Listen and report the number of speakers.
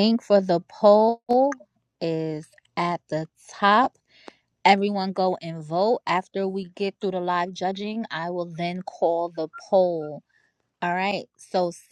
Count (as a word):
one